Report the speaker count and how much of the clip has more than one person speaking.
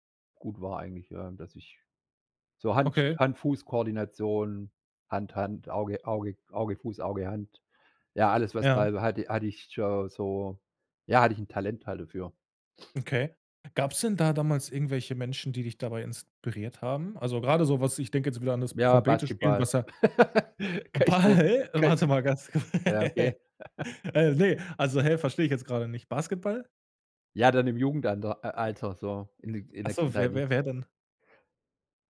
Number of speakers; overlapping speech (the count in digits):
2, about 8%